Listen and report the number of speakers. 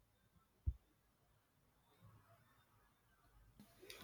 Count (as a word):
zero